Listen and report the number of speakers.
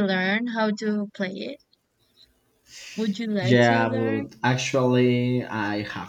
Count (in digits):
2